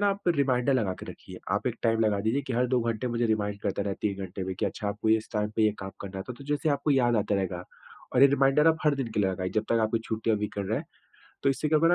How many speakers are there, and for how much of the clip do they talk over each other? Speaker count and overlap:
one, no overlap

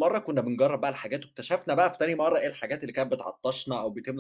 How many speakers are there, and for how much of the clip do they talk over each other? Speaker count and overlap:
one, no overlap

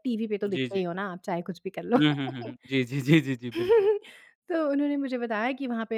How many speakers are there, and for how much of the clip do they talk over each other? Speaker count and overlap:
two, about 7%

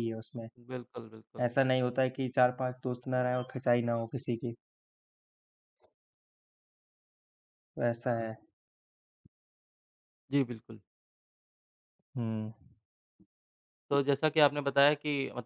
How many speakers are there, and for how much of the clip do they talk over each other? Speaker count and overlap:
two, under 1%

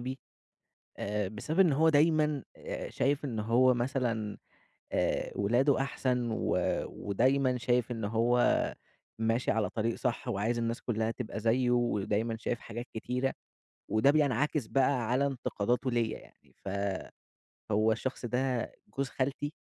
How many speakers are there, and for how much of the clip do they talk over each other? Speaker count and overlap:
one, no overlap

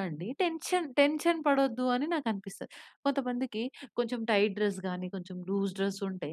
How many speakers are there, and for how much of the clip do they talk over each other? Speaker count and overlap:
one, no overlap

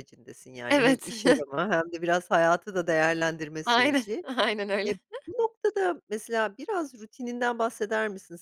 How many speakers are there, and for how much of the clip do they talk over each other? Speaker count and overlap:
two, about 14%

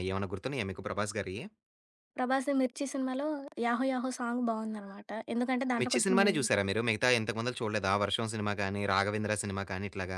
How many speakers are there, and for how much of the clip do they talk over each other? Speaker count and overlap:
two, about 7%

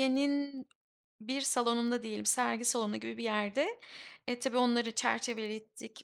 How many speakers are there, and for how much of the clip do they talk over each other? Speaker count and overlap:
one, no overlap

